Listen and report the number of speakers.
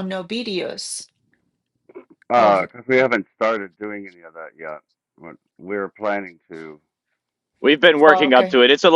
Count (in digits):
3